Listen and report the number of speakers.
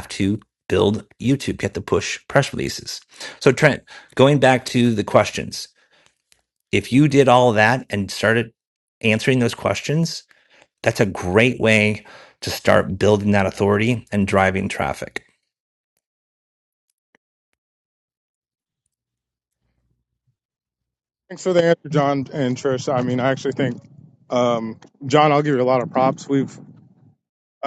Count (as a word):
two